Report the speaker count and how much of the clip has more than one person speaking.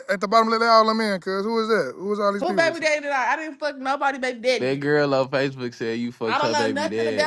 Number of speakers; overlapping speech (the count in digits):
3, about 20%